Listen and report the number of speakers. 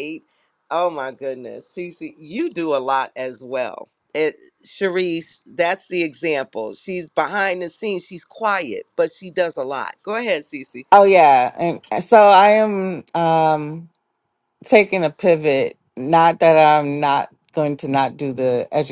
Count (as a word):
two